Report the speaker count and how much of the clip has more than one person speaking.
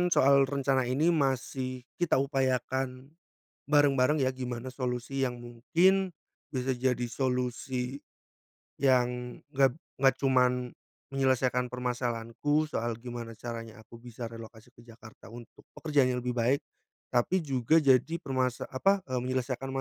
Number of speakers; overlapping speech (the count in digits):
1, no overlap